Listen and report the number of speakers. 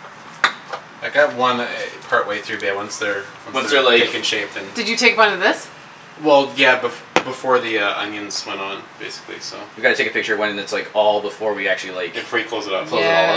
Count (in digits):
3